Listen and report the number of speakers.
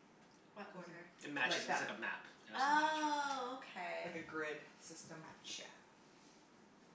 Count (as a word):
three